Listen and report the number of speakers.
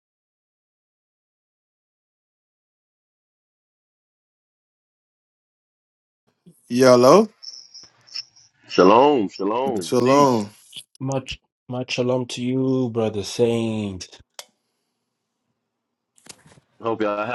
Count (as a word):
three